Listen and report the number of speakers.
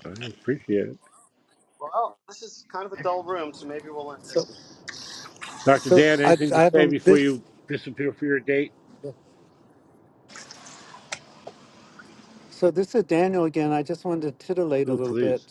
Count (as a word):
three